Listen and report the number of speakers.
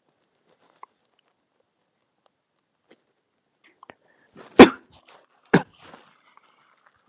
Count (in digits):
0